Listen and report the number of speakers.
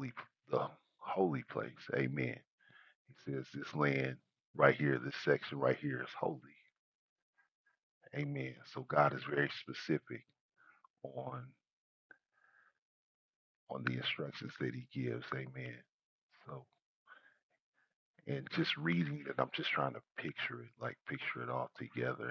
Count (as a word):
one